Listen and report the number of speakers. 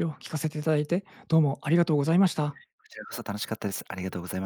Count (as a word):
two